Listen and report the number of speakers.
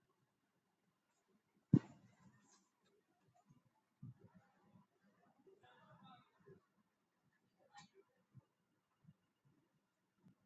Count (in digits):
0